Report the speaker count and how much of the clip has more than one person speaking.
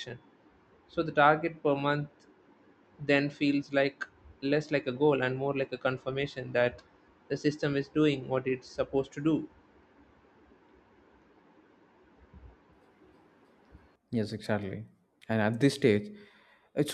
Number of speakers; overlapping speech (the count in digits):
2, no overlap